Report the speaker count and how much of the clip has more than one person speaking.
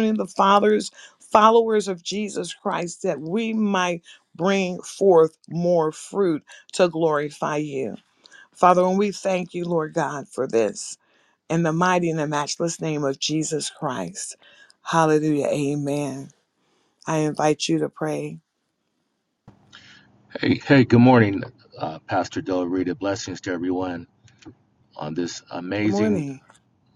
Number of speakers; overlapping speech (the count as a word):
two, about 1%